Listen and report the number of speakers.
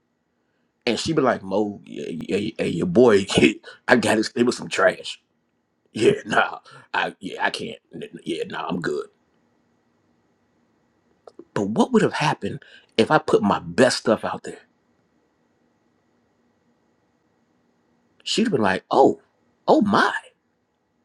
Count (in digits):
1